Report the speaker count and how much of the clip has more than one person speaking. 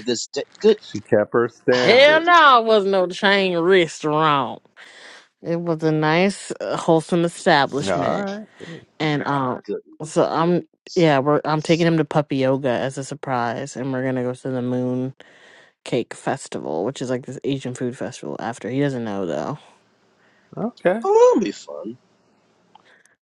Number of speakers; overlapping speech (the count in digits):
3, about 4%